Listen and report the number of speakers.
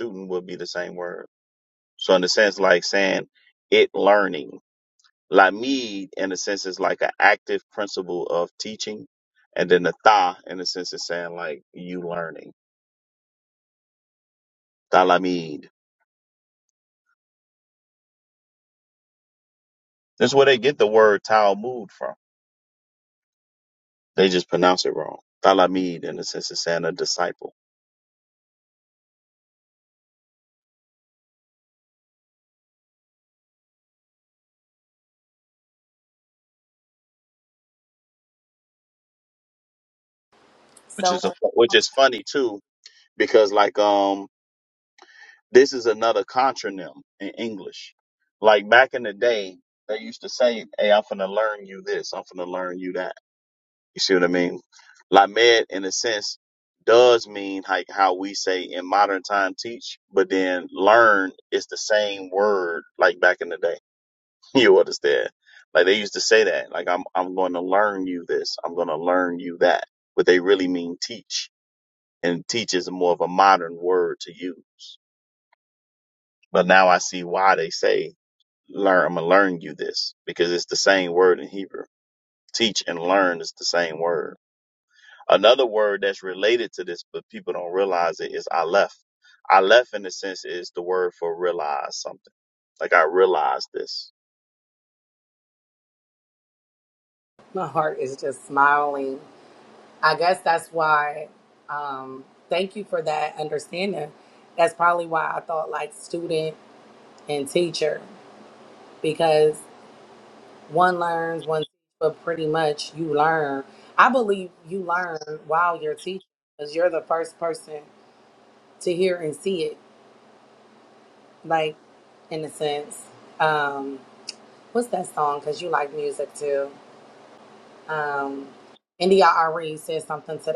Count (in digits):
2